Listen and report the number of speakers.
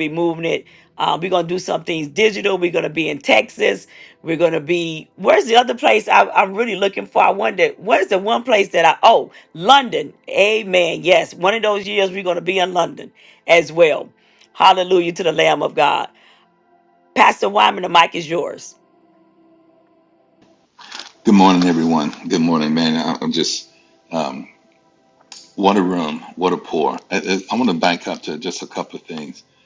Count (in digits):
2